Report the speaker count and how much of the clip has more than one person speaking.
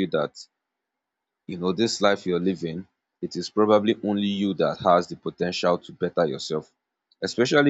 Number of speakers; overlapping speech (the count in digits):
1, no overlap